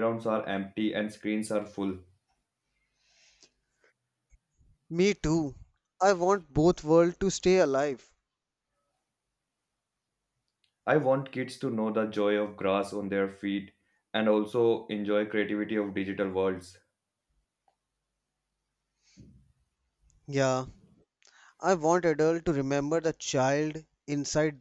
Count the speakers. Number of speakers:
2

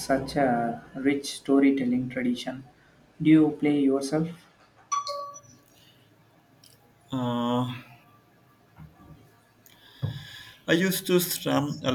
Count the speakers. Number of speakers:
2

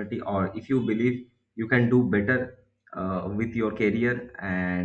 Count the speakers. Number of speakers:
1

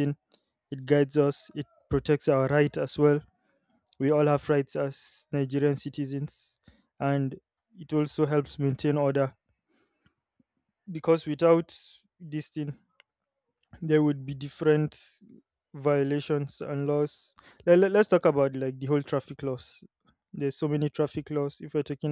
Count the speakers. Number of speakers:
1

